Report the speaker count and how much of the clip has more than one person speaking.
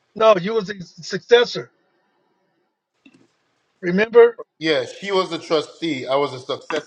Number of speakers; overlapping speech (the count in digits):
2, no overlap